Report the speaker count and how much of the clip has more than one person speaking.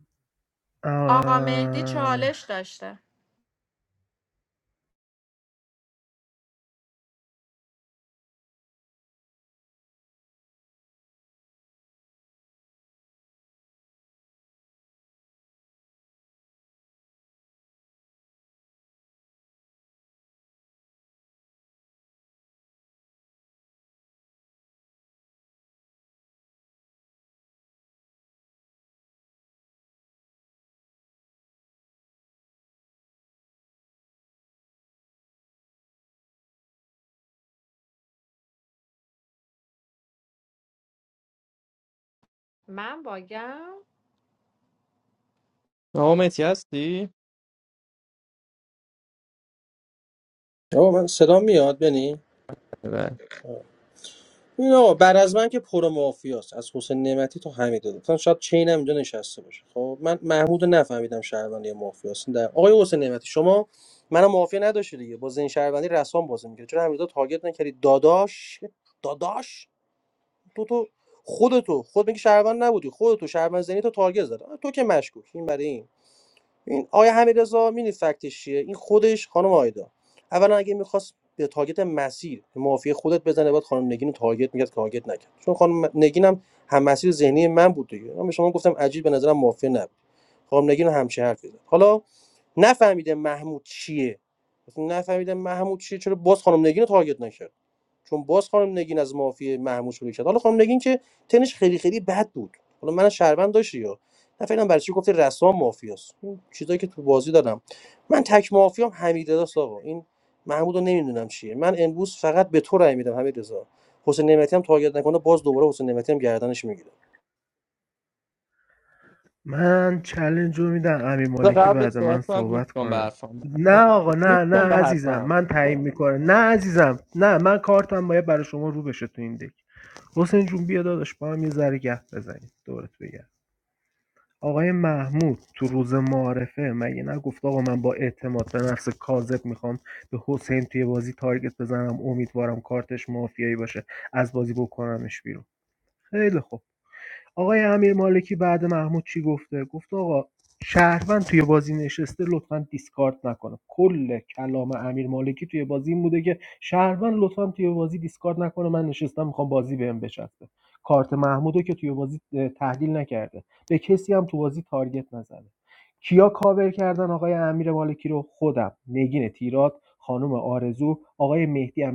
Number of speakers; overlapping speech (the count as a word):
four, about 2%